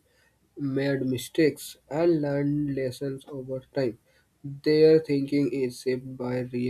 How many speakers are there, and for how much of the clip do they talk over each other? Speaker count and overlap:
1, no overlap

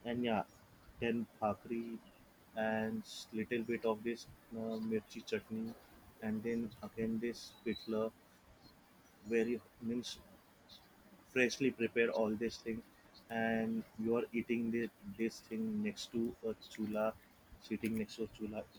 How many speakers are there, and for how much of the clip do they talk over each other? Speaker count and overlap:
1, no overlap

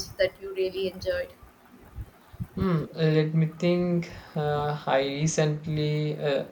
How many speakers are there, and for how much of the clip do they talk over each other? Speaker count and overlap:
2, no overlap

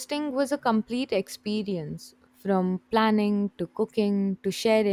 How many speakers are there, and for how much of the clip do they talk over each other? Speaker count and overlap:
1, no overlap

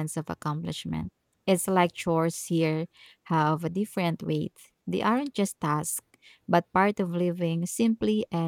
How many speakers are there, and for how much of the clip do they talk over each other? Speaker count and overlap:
1, no overlap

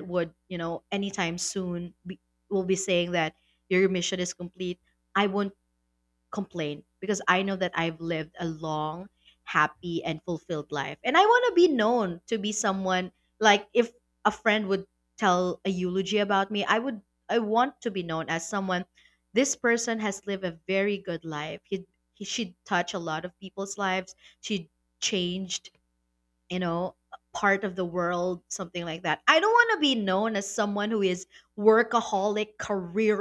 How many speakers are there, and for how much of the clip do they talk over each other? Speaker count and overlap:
1, no overlap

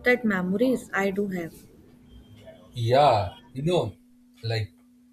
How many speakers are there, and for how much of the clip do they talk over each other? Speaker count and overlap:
2, no overlap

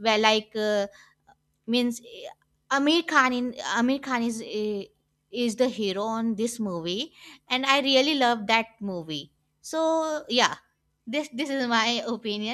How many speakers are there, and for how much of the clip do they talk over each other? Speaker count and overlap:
1, no overlap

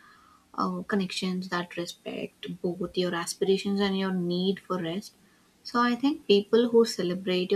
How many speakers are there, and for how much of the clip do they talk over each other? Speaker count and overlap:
1, no overlap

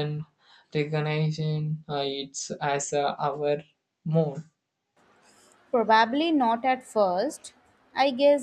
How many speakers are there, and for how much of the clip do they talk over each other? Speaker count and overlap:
2, no overlap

